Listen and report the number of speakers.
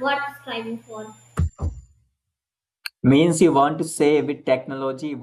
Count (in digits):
2